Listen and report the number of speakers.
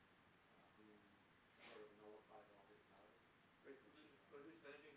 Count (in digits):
2